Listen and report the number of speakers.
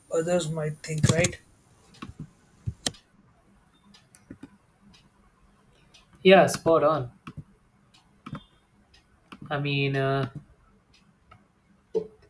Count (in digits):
2